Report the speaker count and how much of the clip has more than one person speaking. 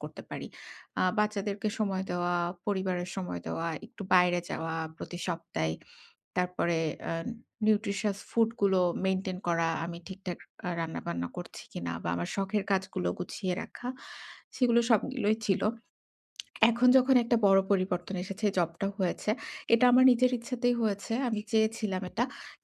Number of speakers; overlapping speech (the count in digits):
1, no overlap